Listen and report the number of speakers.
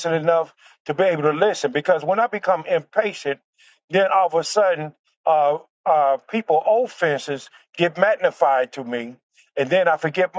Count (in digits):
1